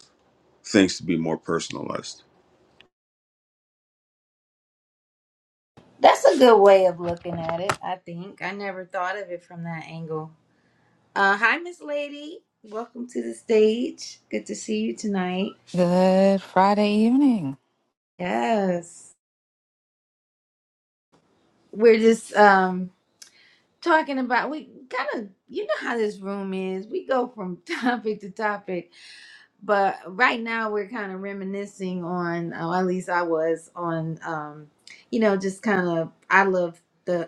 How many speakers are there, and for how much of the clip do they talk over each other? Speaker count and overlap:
three, no overlap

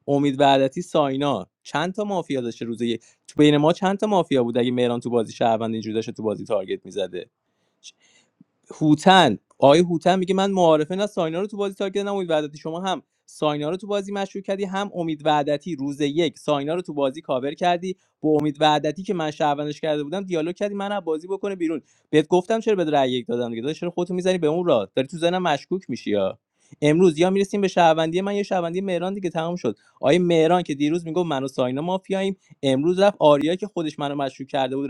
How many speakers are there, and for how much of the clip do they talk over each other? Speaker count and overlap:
one, no overlap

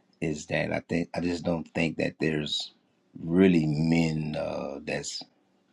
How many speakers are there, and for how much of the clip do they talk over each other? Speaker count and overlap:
one, no overlap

